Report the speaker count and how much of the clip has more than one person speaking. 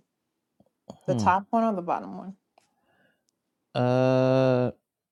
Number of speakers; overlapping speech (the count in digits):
2, about 4%